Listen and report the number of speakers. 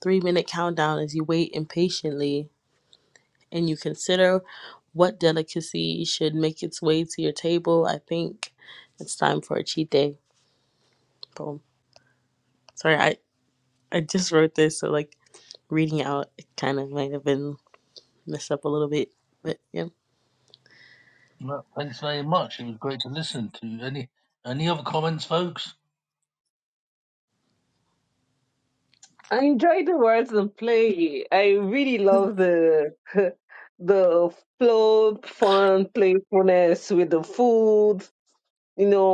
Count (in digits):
3